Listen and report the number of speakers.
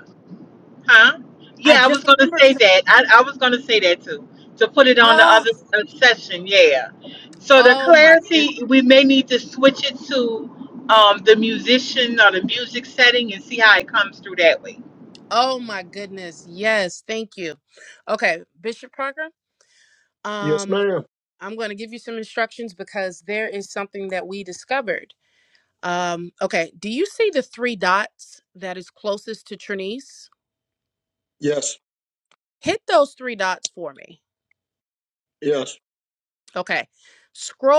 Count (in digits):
3